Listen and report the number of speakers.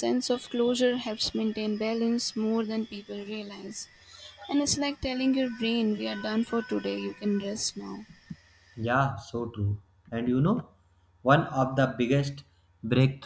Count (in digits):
2